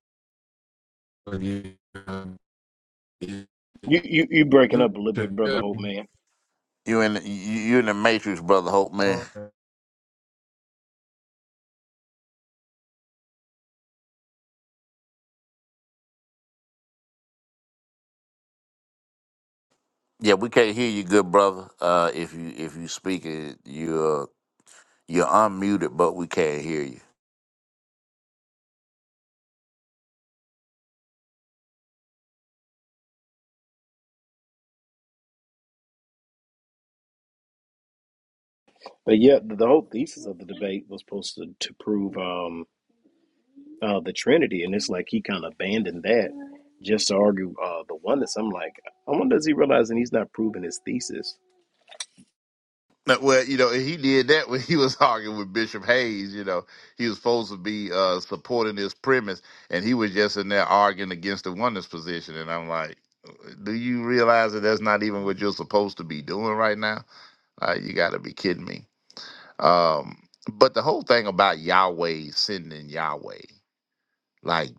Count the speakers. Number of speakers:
3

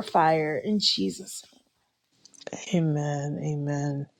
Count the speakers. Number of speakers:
2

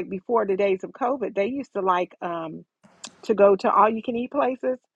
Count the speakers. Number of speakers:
1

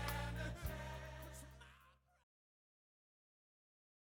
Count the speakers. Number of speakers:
0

